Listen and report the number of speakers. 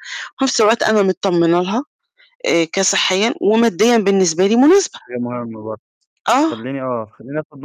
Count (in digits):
2